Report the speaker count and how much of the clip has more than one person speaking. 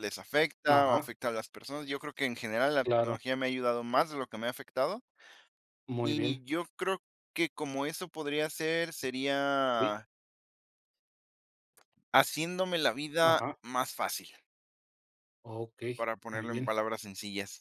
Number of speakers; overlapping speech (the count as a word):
two, about 10%